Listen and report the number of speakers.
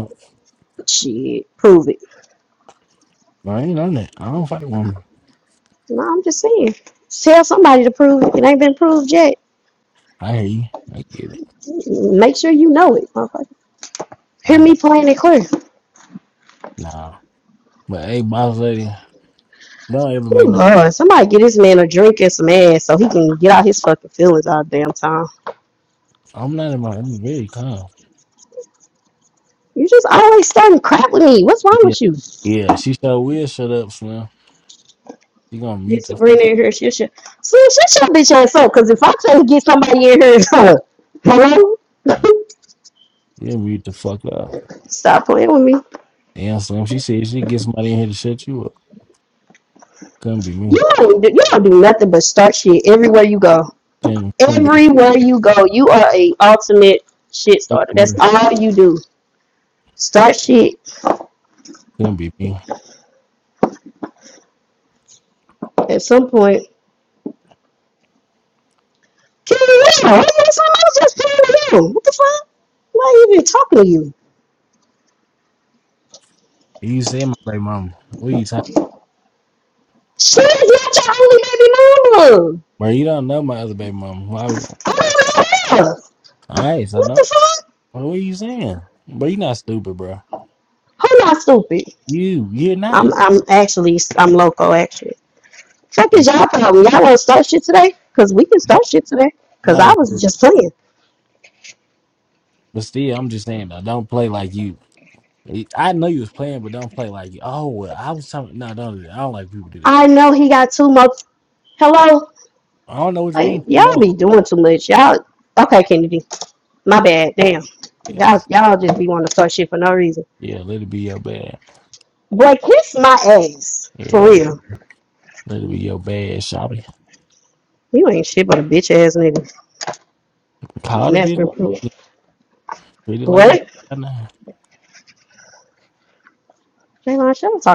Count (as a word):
two